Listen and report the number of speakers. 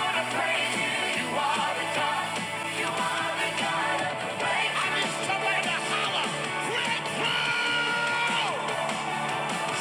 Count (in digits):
1